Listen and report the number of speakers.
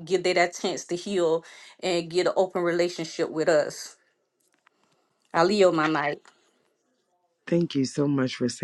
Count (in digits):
2